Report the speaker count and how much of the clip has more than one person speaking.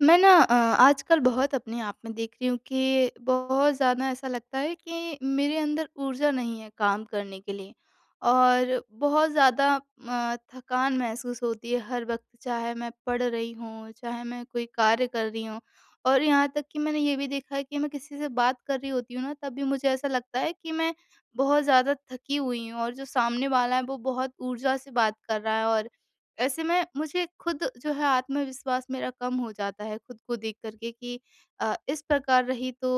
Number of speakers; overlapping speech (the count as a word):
one, no overlap